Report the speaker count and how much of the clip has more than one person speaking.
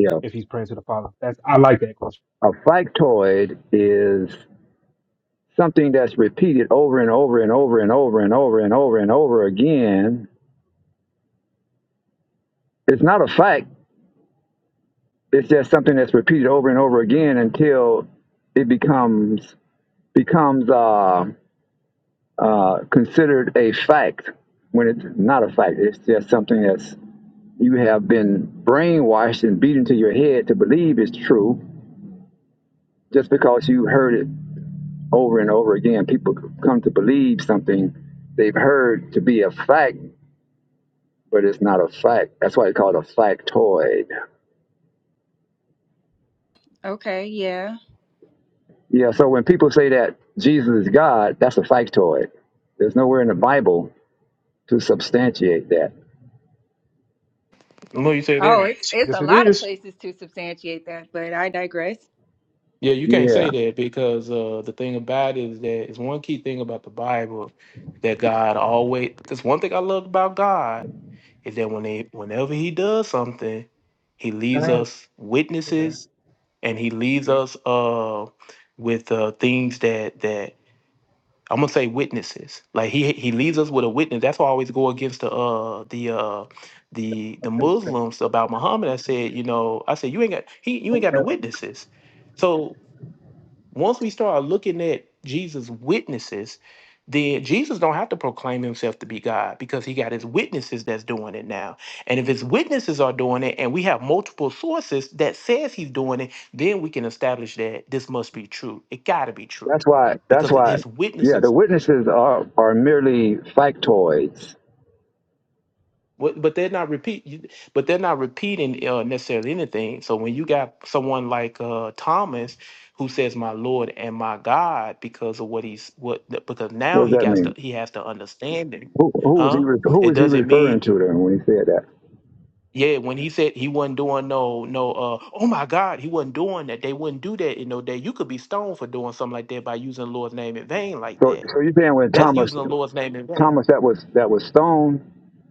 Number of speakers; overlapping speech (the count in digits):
4, about 4%